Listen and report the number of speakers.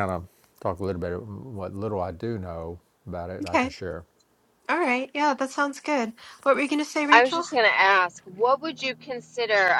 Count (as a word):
three